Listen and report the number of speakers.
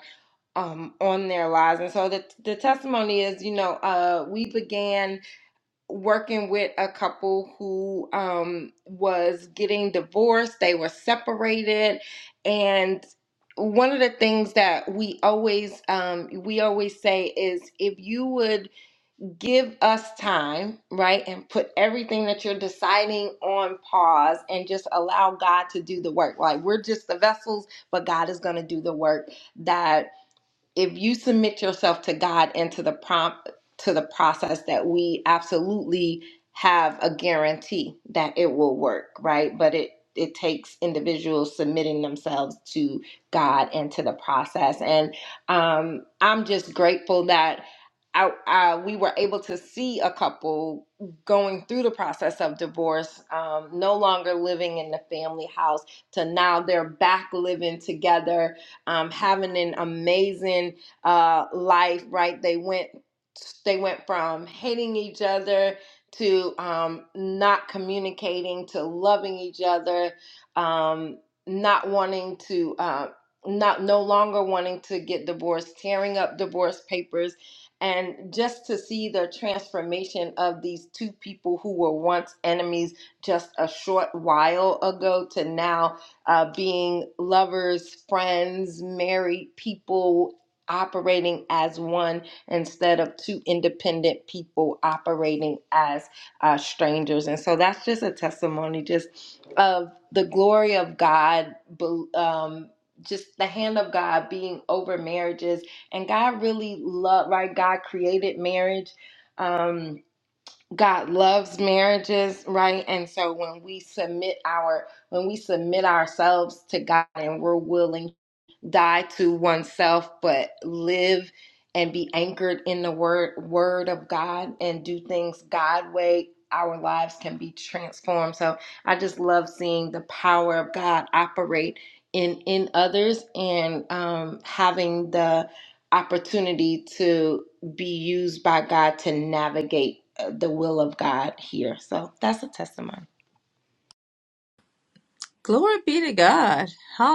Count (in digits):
2